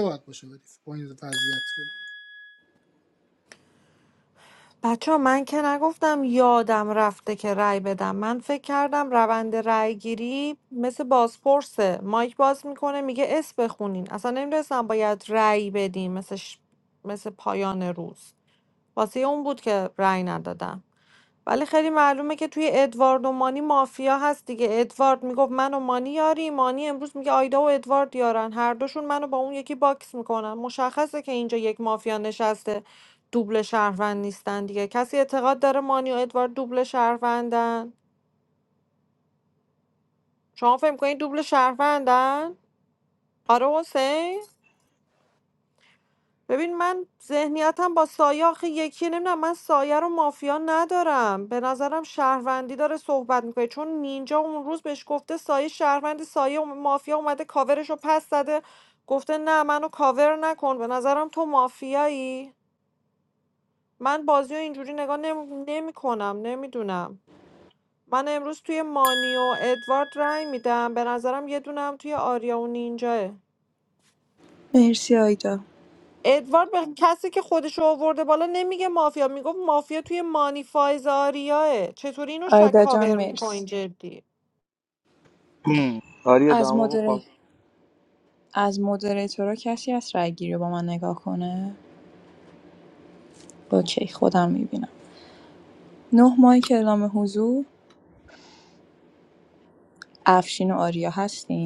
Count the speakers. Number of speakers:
4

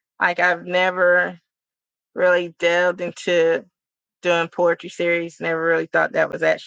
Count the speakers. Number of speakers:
1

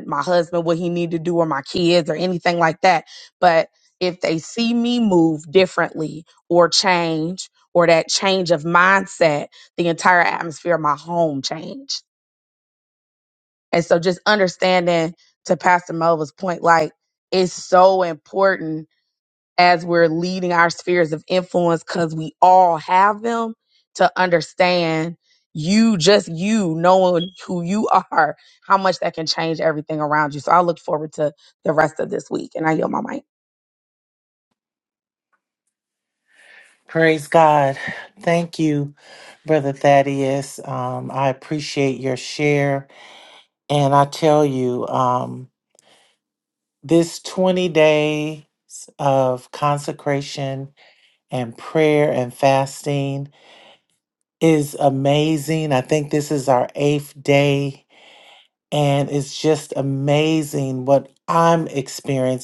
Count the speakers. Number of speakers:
2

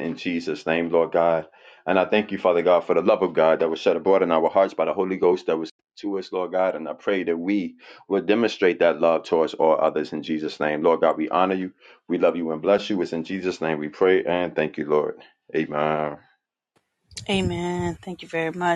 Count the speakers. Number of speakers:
2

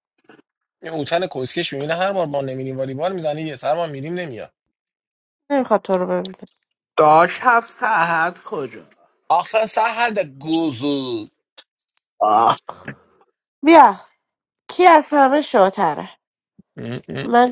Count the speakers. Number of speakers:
3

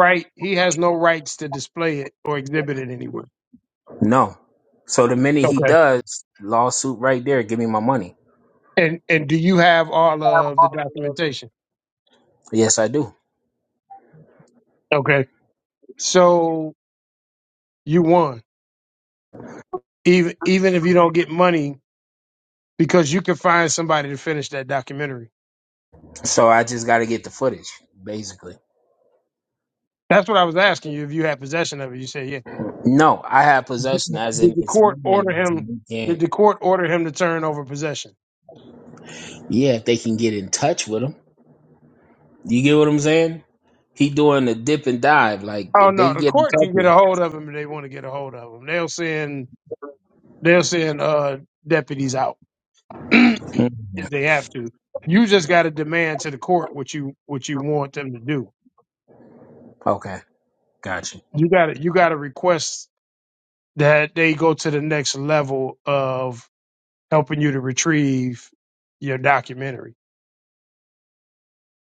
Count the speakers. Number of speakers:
2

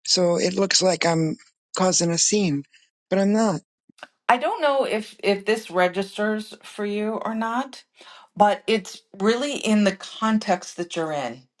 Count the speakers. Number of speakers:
2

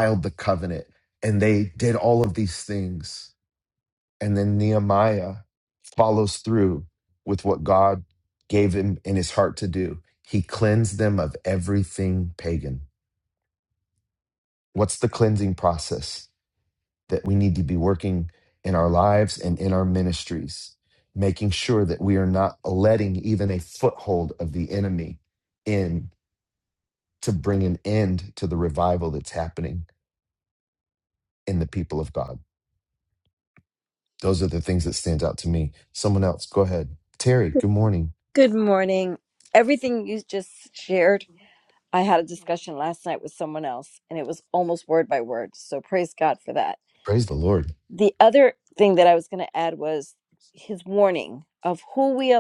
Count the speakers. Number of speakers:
2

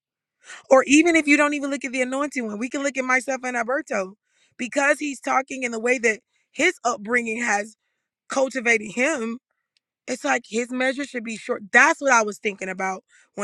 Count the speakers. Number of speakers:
1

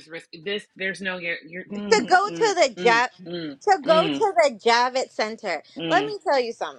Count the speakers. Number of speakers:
2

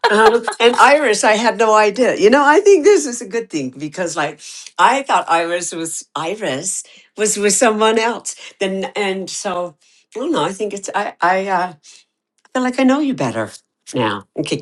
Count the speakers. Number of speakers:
1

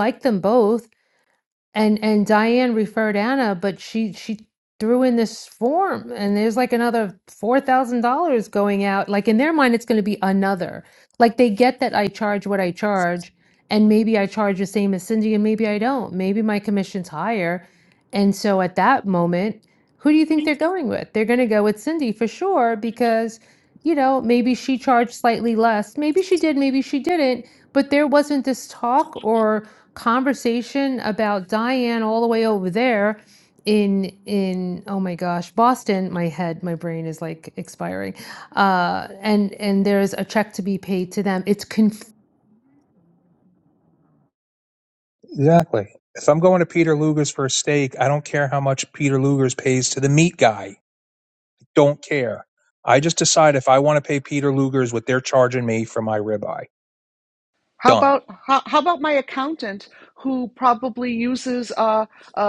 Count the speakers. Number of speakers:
3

